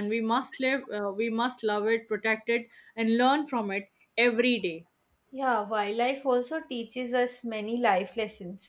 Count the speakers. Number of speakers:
2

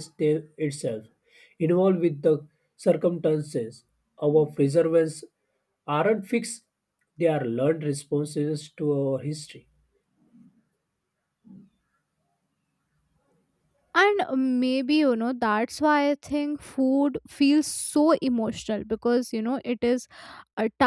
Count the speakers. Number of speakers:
2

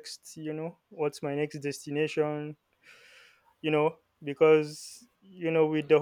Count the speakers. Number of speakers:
1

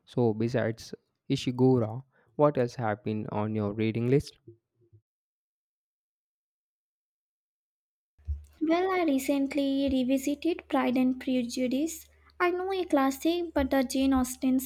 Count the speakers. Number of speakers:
2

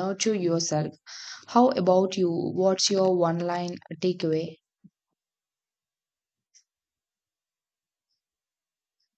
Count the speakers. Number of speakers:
1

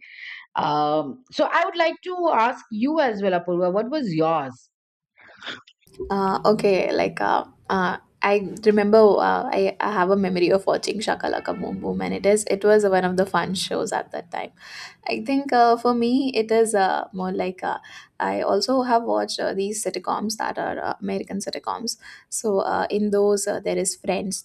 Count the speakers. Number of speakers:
2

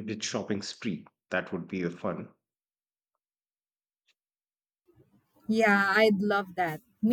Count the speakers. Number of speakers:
2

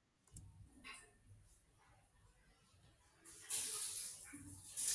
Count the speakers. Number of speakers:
0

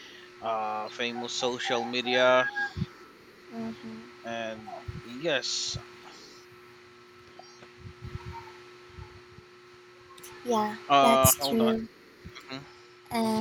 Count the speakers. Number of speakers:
2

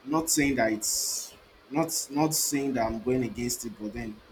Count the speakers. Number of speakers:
1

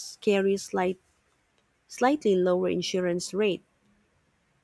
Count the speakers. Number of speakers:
1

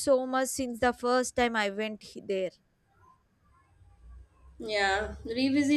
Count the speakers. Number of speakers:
2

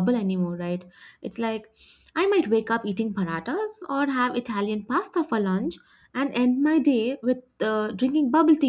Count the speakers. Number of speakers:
1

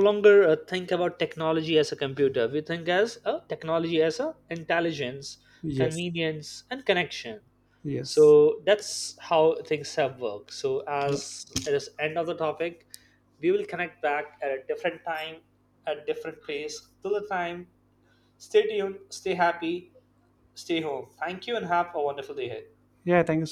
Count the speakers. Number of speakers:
2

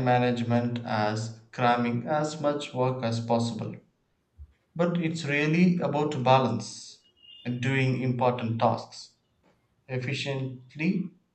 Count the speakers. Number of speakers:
1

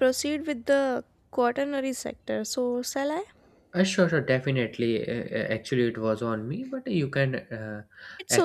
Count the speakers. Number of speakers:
2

